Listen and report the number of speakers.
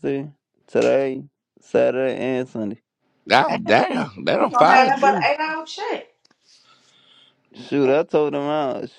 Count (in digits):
3